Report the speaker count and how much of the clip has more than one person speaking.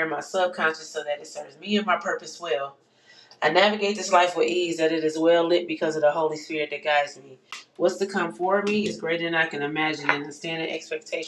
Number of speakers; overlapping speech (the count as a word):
one, no overlap